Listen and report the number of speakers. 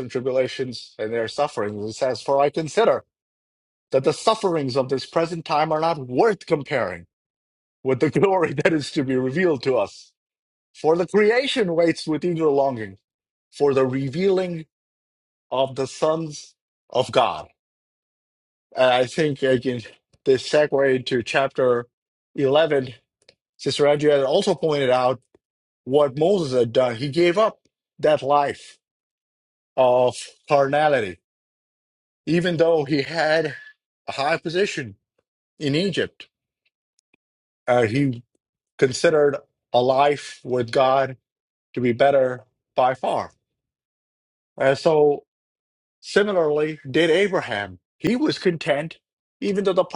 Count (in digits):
1